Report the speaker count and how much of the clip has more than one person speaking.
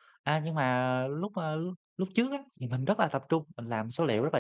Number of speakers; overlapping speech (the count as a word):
one, no overlap